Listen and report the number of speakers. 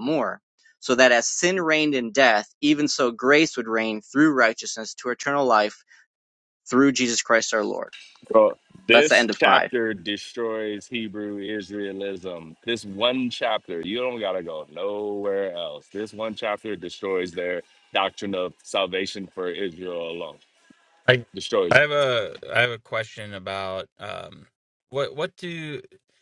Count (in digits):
3